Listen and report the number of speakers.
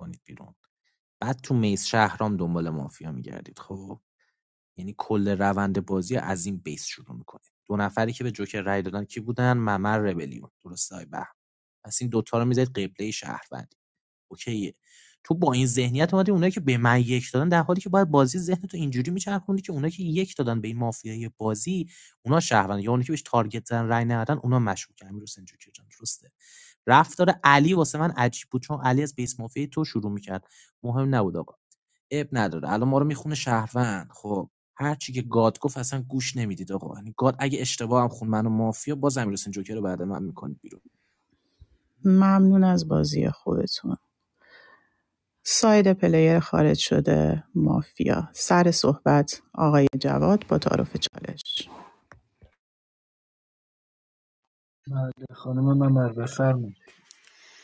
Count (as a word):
three